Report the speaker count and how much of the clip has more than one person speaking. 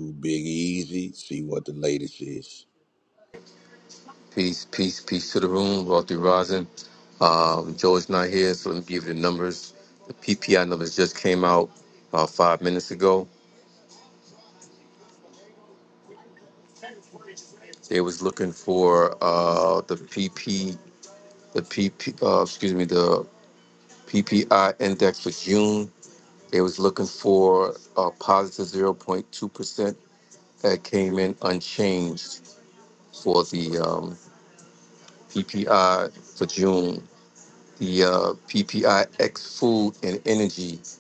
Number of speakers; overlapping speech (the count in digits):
2, no overlap